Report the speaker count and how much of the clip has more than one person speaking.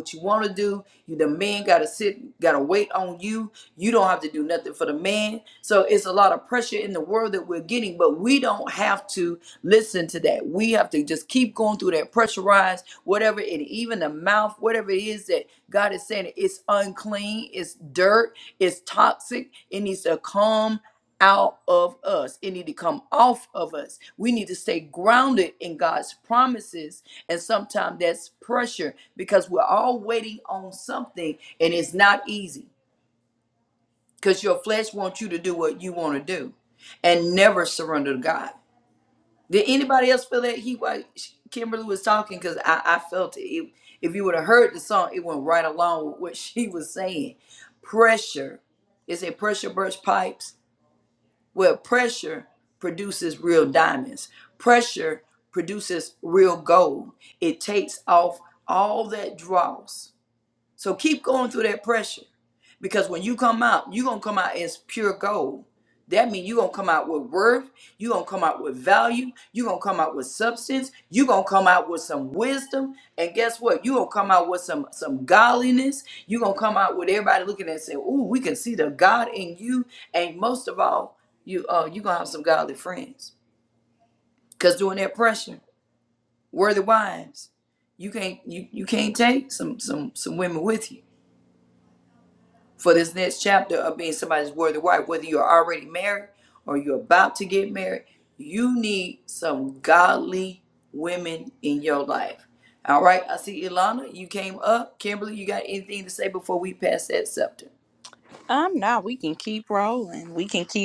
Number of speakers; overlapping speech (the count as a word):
two, no overlap